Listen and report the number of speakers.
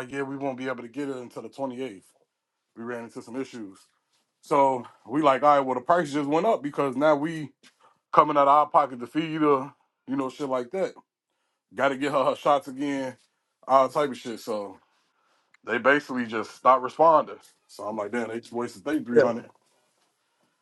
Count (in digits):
1